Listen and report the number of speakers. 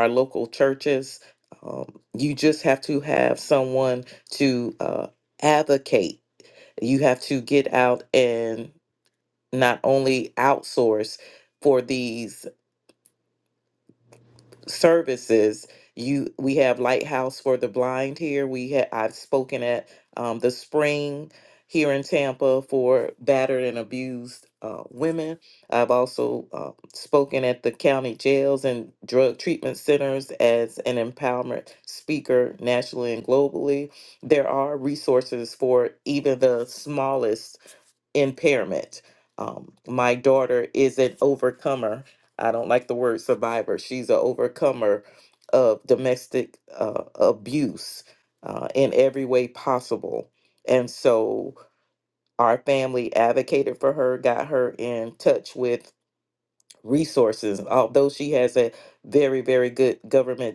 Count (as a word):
one